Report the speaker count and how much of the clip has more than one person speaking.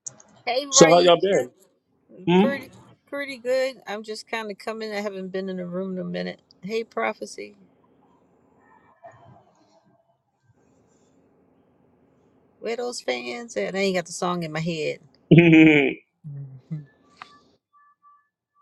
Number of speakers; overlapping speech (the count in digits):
2, about 4%